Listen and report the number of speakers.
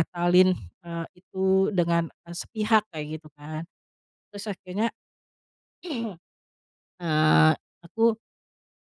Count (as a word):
one